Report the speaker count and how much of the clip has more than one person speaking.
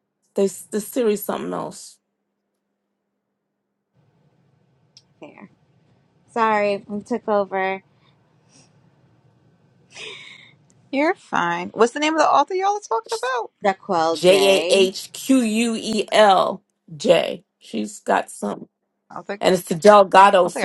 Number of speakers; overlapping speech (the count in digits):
3, about 5%